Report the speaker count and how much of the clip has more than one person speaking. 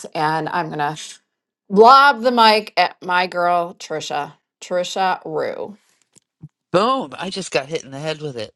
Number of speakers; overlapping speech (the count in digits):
2, no overlap